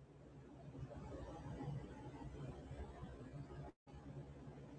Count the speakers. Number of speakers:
0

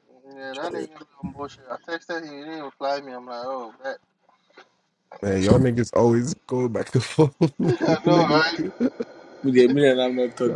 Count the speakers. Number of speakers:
3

